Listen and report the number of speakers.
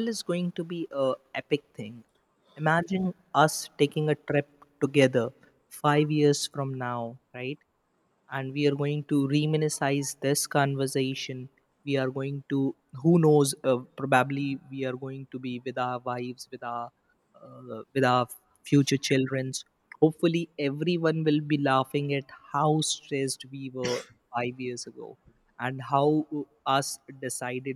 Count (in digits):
1